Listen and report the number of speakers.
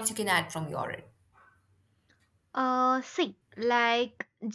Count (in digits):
2